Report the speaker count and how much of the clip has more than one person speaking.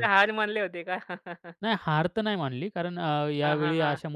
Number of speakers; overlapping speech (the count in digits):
2, about 16%